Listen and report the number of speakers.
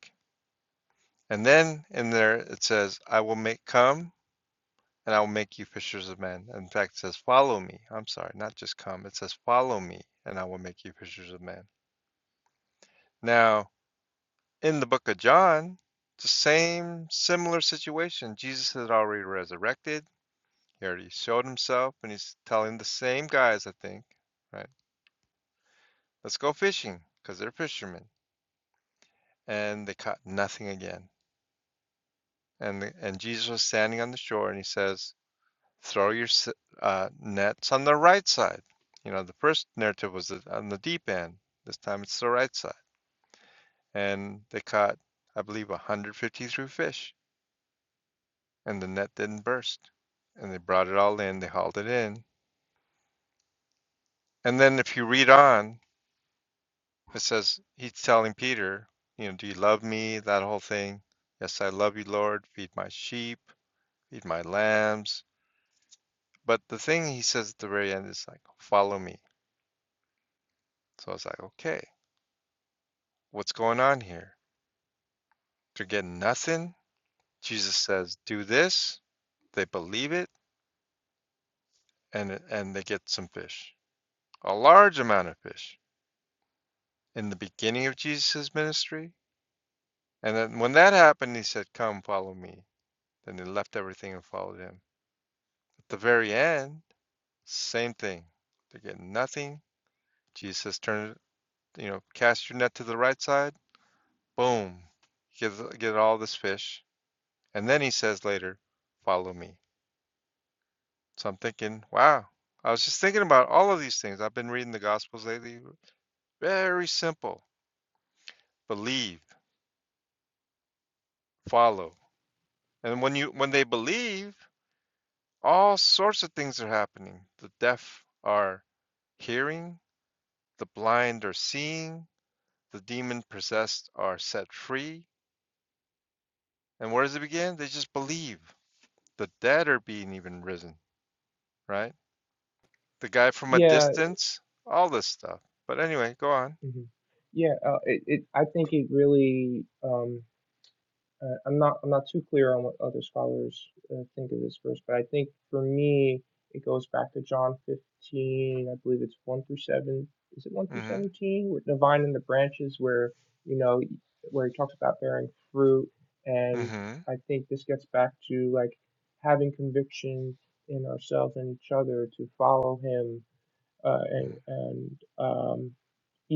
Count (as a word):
two